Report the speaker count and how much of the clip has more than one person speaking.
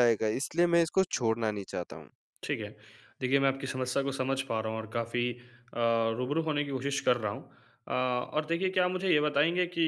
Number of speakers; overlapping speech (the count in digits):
2, no overlap